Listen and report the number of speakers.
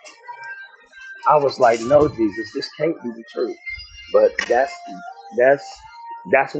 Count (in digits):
1